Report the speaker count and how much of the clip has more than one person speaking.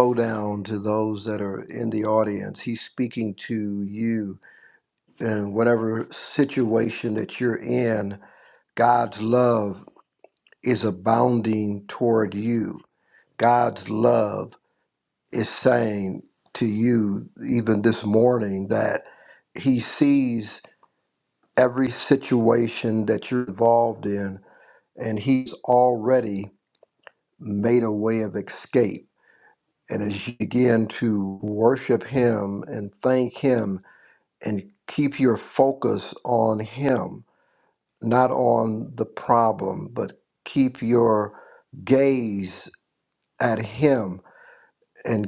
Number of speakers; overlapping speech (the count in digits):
1, no overlap